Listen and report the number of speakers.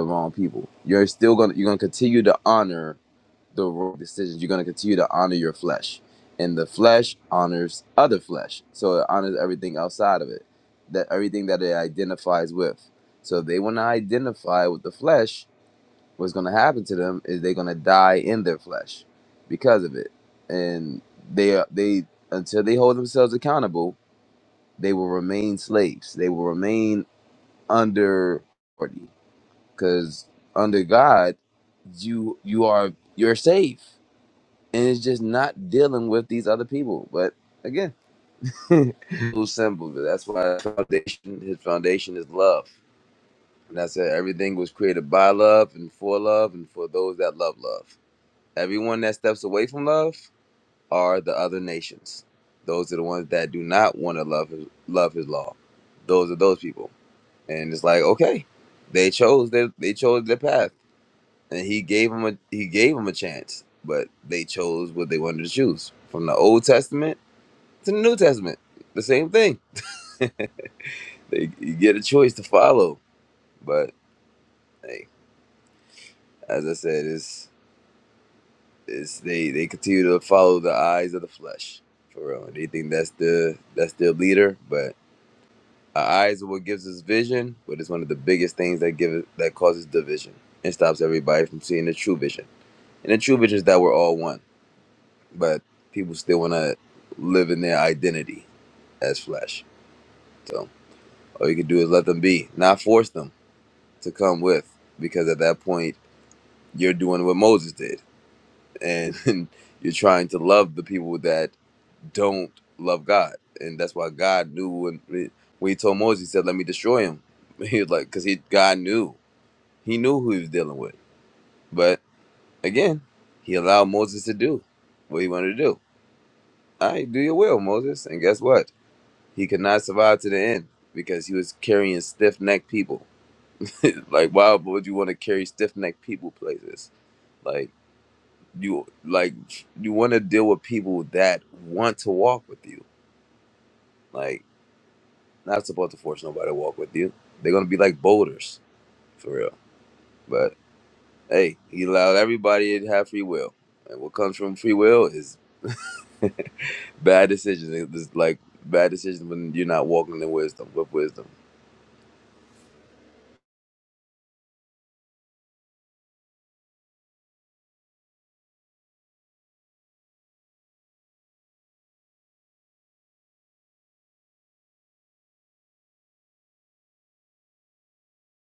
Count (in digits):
1